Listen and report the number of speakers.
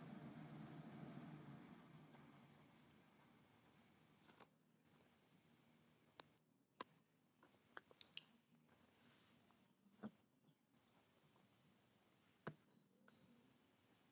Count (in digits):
0